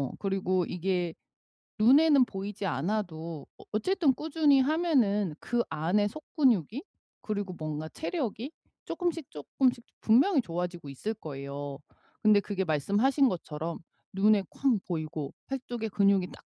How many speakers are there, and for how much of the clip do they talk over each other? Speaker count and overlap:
1, no overlap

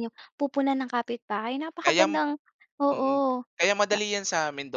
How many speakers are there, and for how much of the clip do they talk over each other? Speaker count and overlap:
2, about 15%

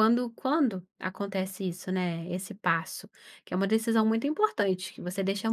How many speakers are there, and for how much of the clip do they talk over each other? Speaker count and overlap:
1, no overlap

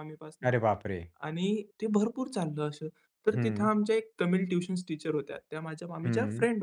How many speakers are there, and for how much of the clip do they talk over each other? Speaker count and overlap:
2, about 12%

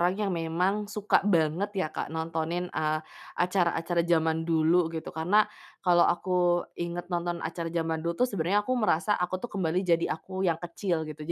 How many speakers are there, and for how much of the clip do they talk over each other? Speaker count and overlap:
1, no overlap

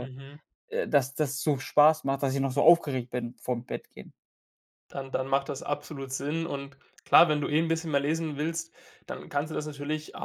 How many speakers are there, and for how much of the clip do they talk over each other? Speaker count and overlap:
2, about 1%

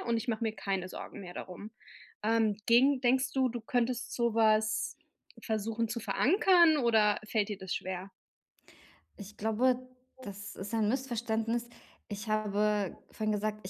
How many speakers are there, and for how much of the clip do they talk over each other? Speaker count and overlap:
2, under 1%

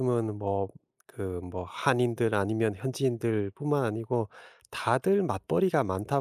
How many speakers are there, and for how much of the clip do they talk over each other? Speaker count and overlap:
1, no overlap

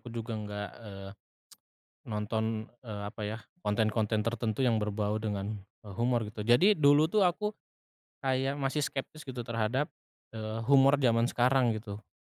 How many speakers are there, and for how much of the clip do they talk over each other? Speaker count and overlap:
1, no overlap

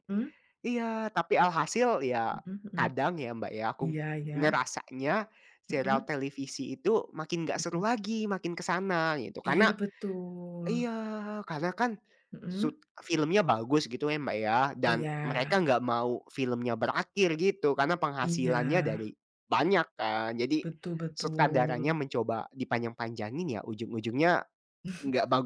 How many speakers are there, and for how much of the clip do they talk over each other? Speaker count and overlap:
2, about 16%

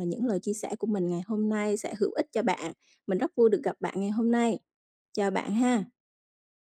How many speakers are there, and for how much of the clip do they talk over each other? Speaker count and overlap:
1, no overlap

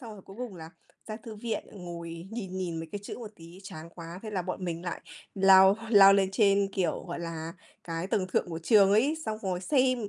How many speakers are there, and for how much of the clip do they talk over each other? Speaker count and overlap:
1, no overlap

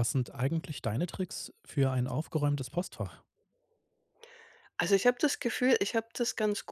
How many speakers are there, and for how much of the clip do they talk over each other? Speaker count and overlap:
2, no overlap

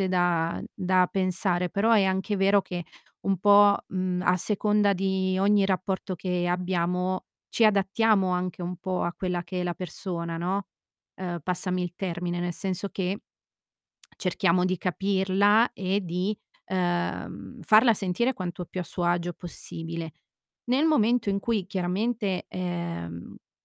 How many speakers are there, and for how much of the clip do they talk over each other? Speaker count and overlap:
1, no overlap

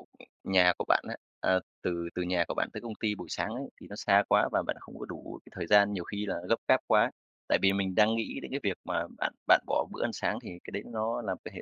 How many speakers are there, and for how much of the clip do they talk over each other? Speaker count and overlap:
1, no overlap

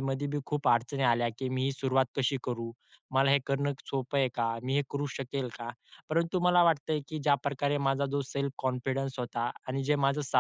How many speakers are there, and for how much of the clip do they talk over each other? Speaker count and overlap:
1, no overlap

